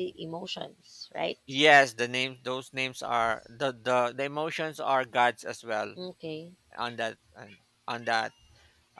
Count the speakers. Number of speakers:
two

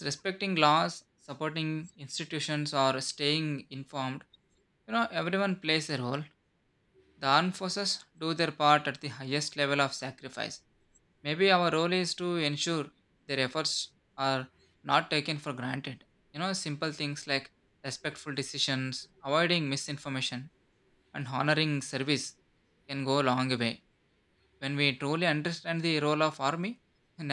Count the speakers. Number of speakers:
one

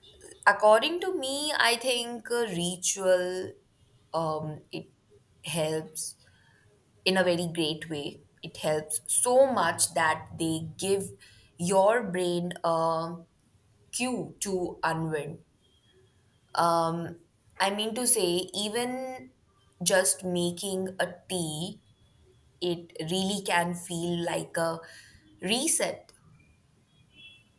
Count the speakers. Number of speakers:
one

